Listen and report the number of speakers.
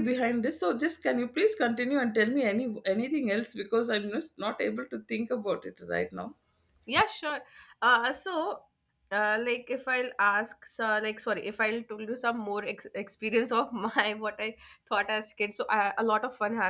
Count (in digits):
2